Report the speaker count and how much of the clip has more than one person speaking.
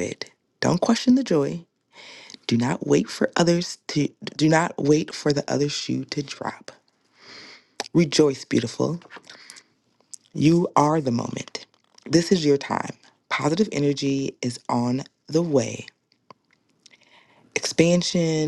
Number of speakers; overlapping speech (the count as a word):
one, no overlap